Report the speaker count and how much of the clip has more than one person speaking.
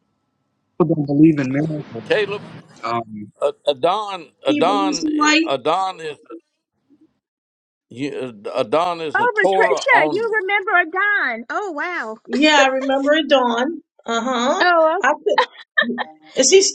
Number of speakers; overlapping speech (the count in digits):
4, about 14%